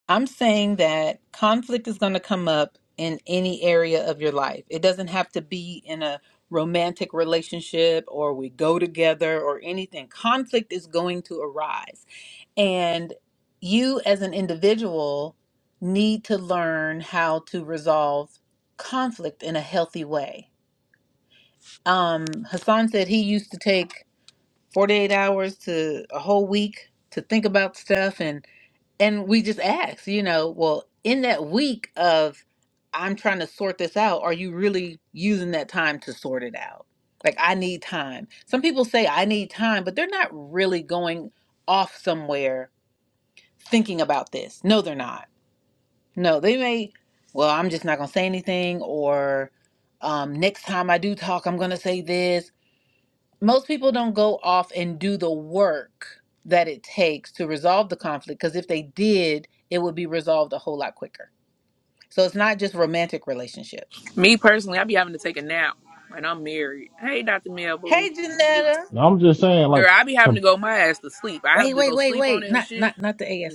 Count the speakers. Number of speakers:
three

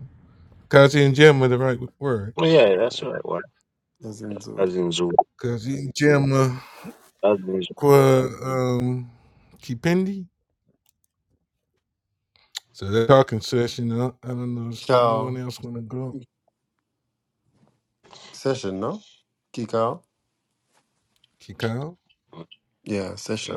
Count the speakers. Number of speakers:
three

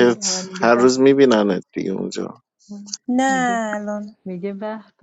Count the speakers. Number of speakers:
three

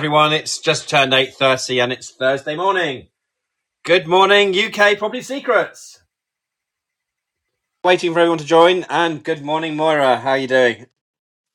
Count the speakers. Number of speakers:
one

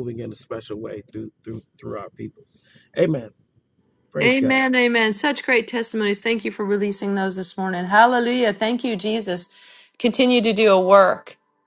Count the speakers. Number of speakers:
two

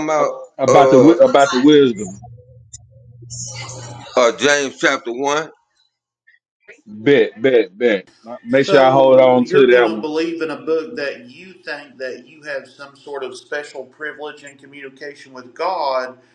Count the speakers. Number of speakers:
three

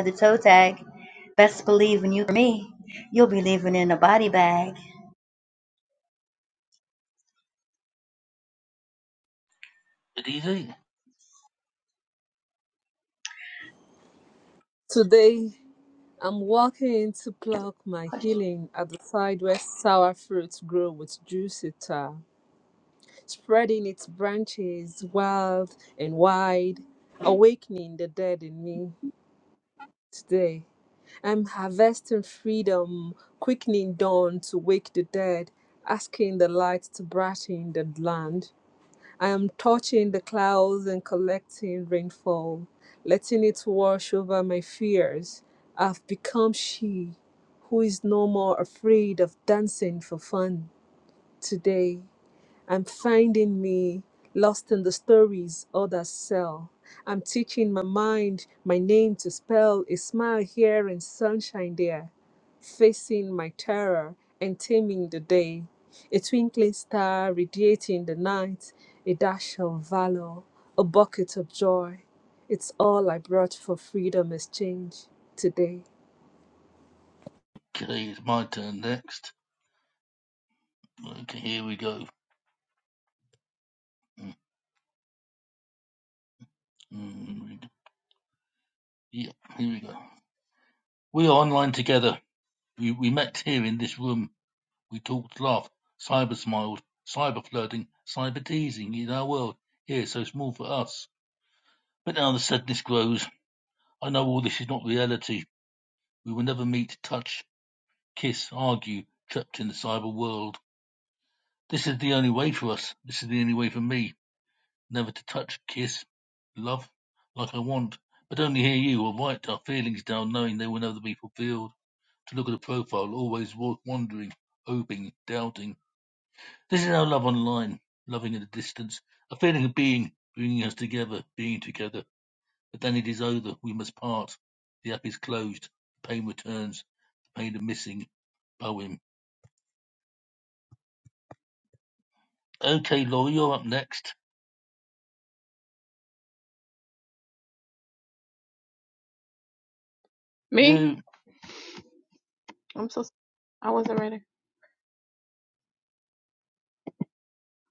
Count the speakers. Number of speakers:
four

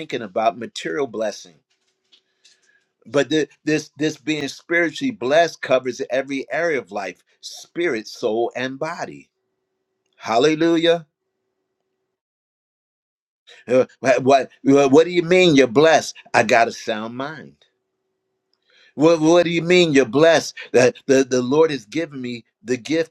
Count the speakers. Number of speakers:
one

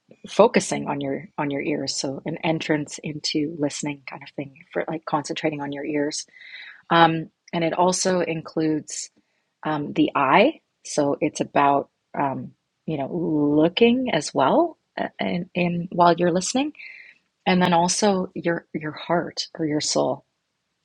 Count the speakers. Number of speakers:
one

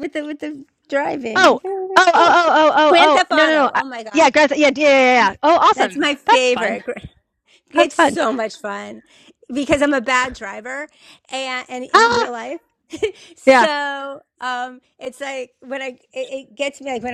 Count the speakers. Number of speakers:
two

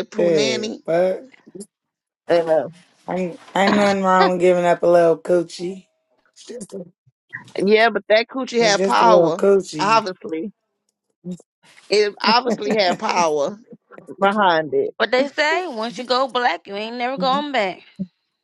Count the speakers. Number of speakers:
three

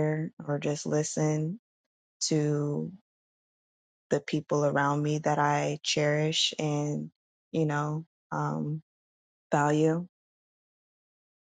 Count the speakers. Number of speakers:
one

